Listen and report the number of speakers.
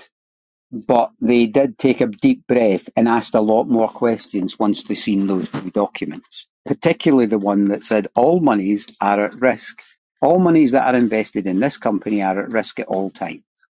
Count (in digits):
1